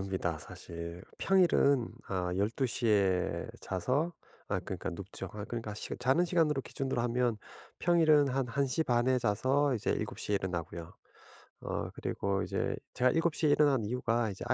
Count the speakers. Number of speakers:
one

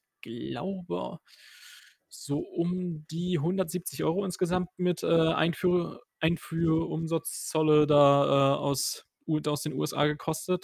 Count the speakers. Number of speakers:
one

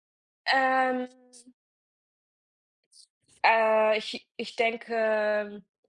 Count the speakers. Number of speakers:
one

